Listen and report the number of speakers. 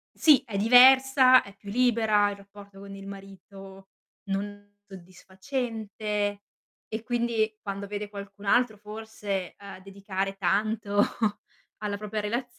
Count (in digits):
1